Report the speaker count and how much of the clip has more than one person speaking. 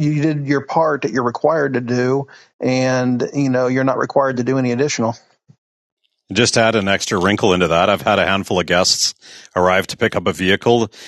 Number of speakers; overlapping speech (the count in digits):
2, no overlap